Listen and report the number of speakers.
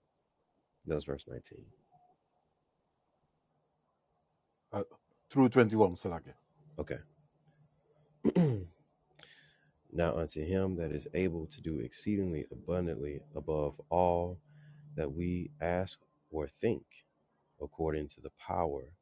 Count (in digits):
2